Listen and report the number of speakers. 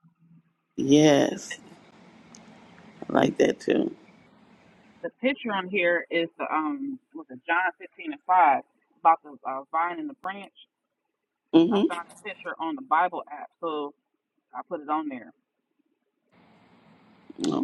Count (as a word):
two